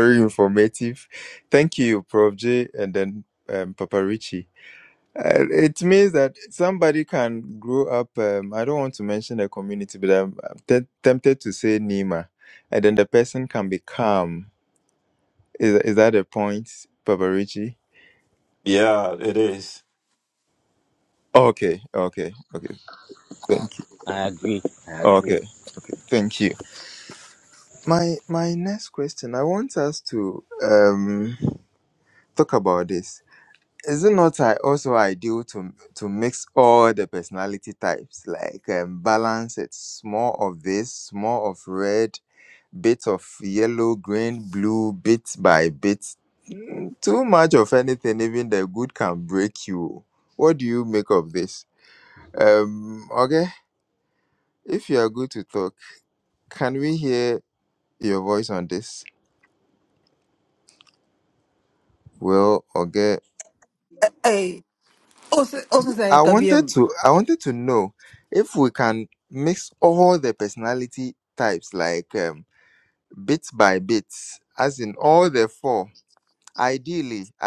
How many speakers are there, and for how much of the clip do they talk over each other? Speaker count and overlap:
4, about 1%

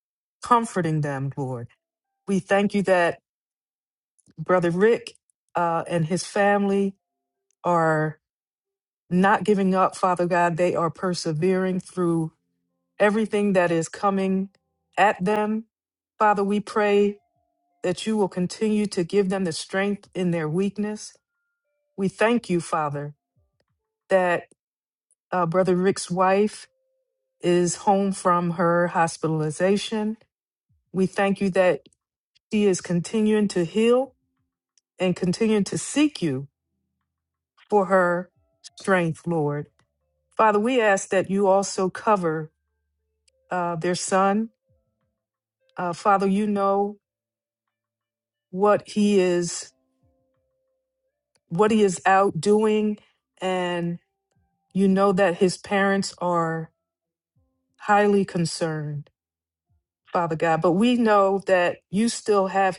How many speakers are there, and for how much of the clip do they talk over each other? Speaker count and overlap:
1, no overlap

